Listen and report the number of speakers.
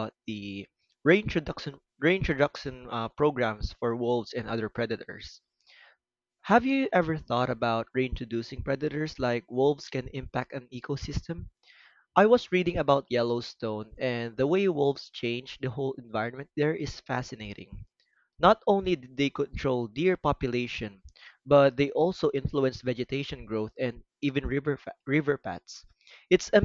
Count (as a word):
one